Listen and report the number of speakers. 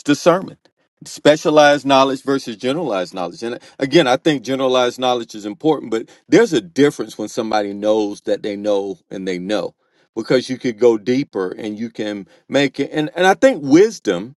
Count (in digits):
1